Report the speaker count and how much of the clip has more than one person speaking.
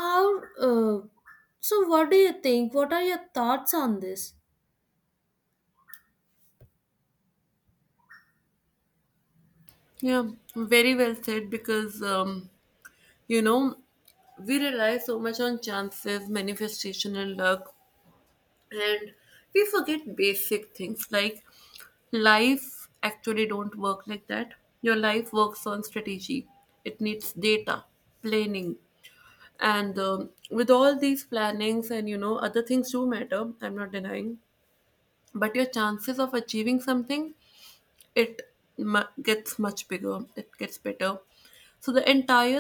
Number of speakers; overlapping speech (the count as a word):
two, no overlap